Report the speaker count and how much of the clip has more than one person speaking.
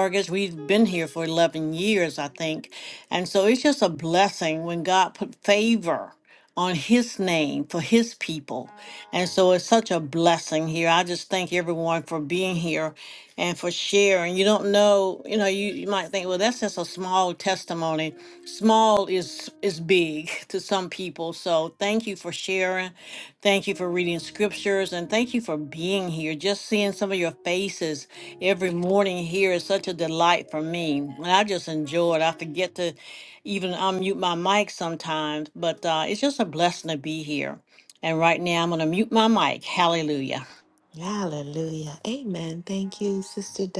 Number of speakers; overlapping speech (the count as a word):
two, no overlap